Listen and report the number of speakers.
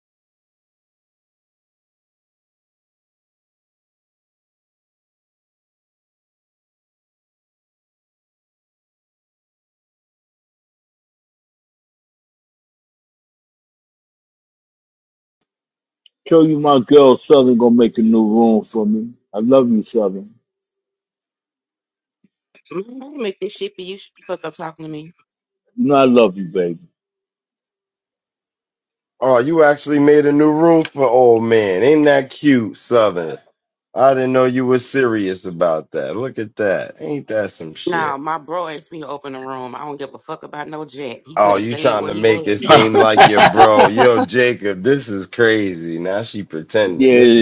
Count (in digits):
3